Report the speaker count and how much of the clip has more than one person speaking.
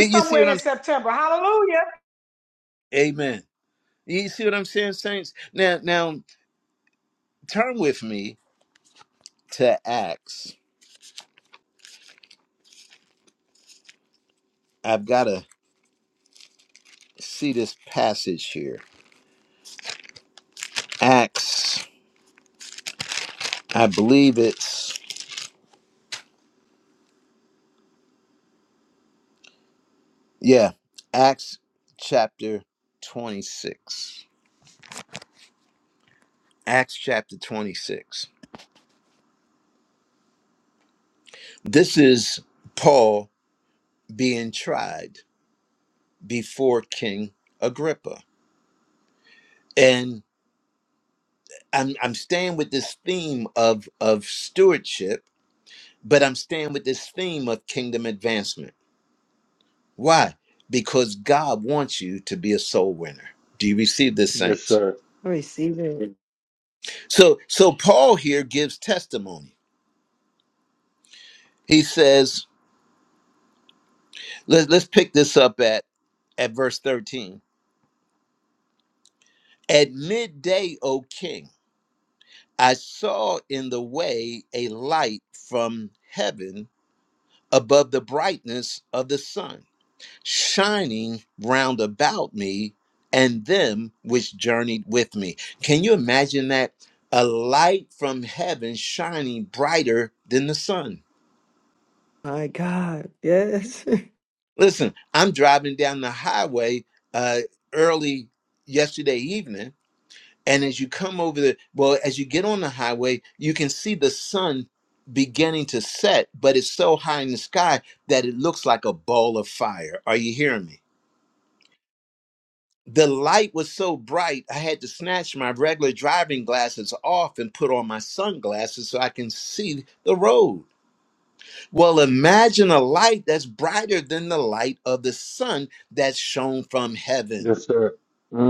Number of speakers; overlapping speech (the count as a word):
four, about 1%